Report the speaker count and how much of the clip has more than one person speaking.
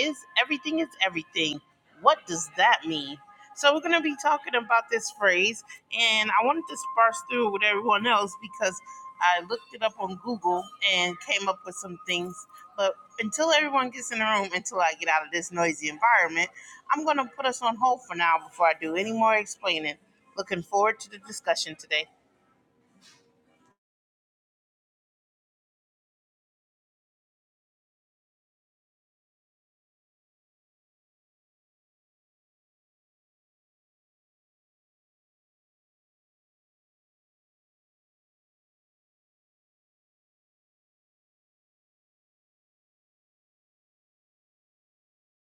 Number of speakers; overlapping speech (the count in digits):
1, no overlap